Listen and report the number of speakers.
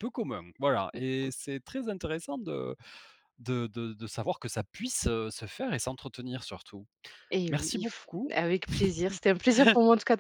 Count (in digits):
2